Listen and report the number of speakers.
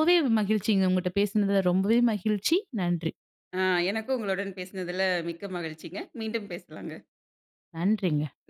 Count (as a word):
two